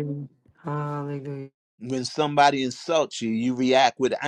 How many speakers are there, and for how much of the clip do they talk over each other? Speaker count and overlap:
2, no overlap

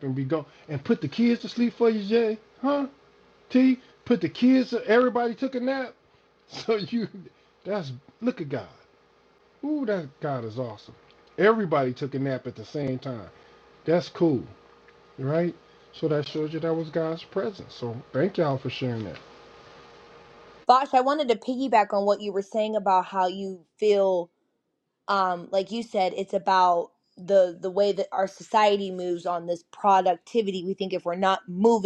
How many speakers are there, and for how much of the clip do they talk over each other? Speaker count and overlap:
2, no overlap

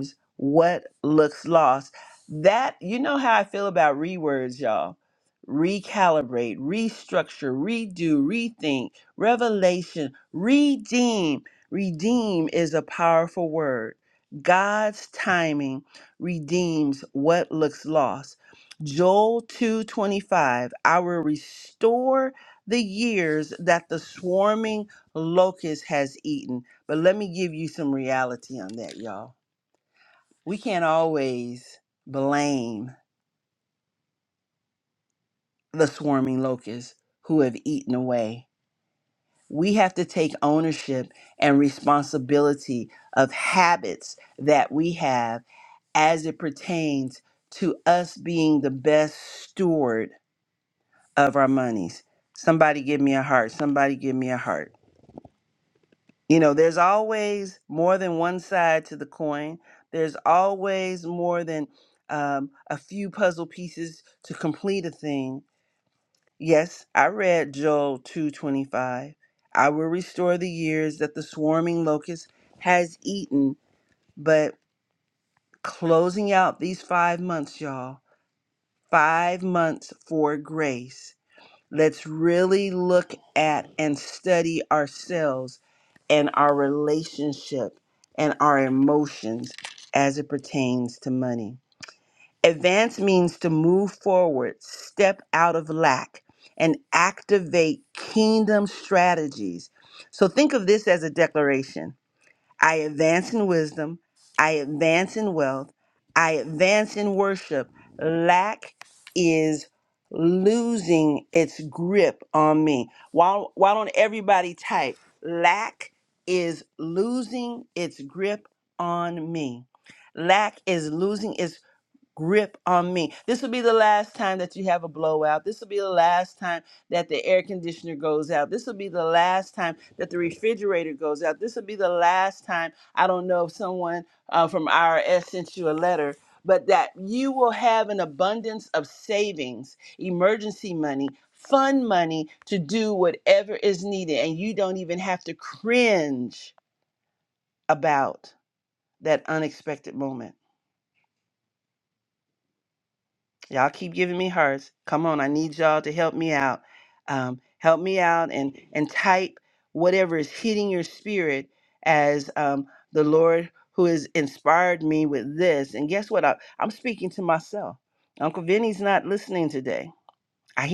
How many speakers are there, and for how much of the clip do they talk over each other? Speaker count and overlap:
1, no overlap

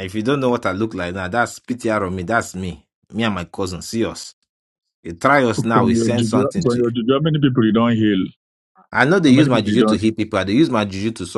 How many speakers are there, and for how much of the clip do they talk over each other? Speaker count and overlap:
2, about 17%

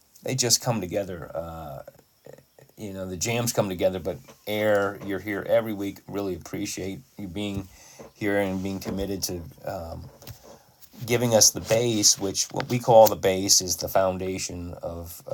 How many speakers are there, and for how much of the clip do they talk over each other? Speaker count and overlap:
1, no overlap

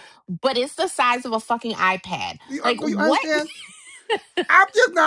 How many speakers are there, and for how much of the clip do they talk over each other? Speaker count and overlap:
2, about 15%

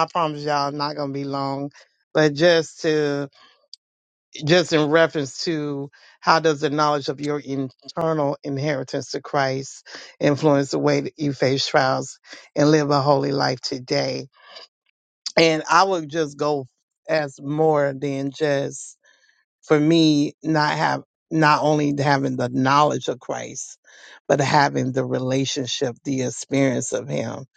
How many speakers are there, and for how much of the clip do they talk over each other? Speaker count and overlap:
1, no overlap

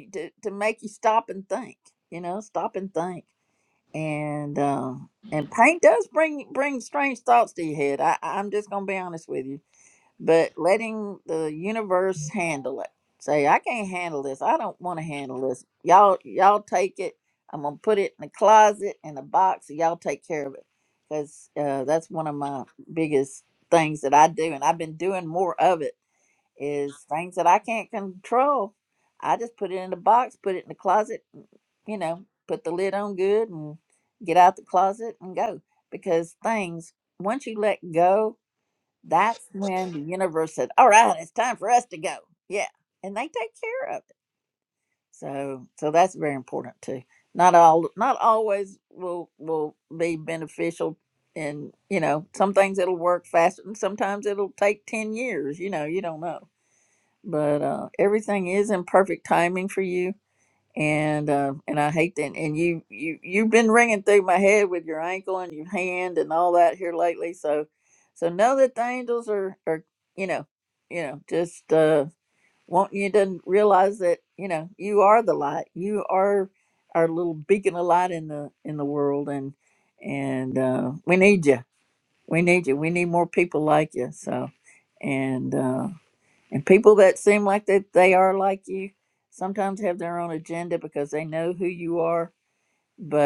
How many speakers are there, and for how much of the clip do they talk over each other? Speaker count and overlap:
1, no overlap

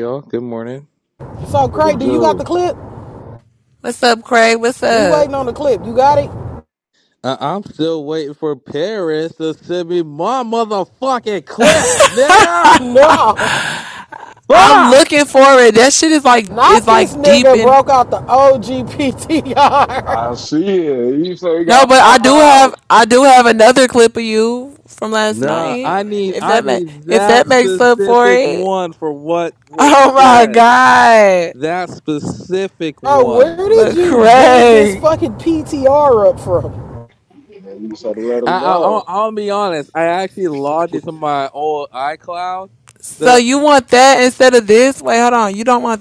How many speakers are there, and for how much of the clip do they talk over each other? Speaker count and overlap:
4, about 22%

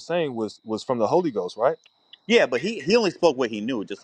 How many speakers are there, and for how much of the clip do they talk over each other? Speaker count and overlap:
2, no overlap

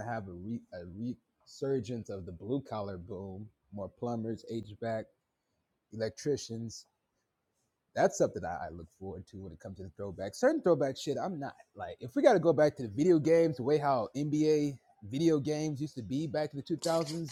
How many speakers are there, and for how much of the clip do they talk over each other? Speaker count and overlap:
1, no overlap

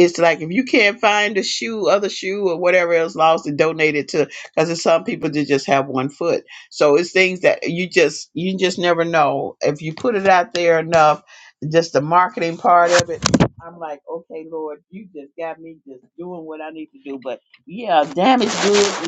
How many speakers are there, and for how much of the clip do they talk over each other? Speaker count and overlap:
1, no overlap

